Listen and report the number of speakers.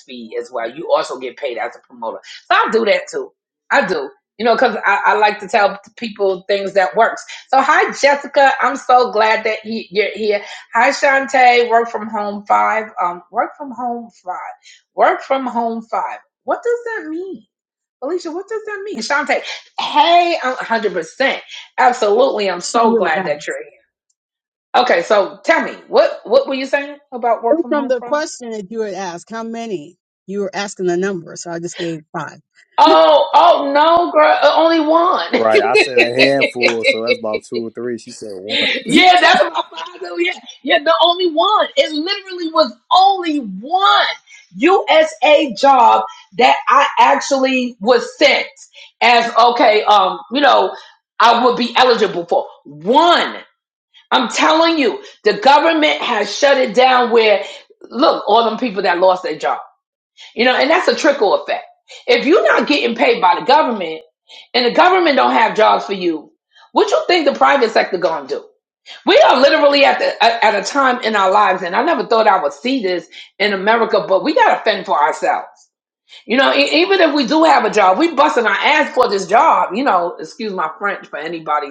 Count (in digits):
3